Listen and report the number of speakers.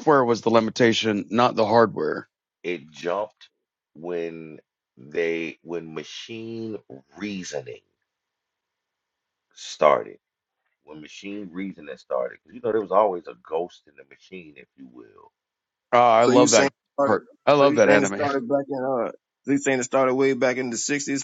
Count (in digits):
3